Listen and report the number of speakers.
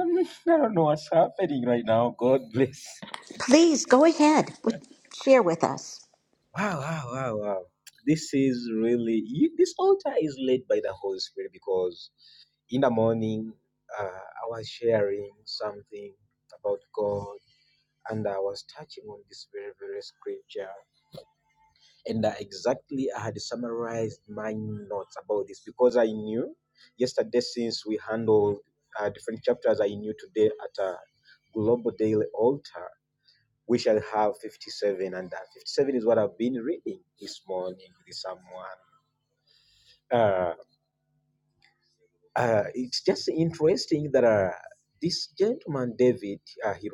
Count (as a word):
two